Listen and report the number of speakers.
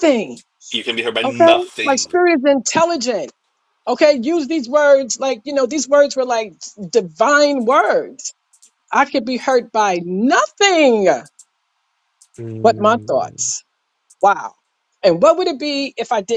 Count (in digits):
2